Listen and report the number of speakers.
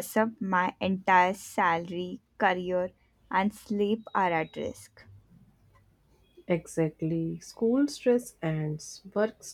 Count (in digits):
2